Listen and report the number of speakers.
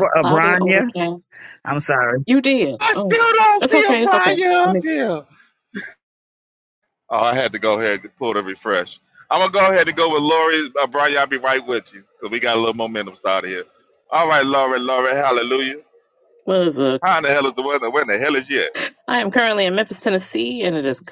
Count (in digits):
3